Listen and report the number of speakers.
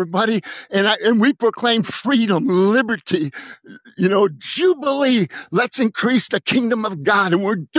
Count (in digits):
1